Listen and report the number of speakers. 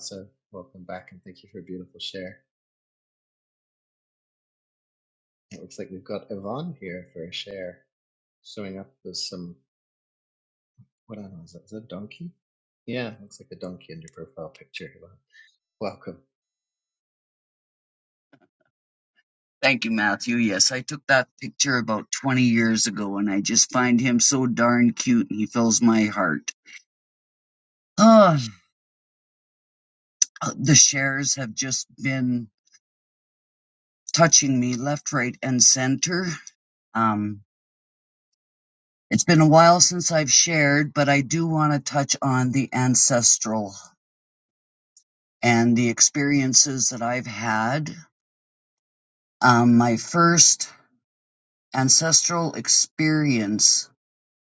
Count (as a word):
two